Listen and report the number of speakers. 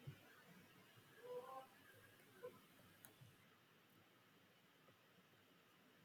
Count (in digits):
0